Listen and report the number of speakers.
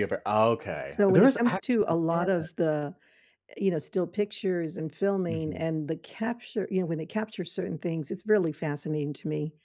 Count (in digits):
2